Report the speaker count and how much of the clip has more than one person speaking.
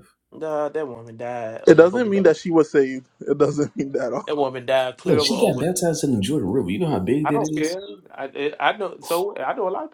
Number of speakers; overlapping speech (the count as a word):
three, about 18%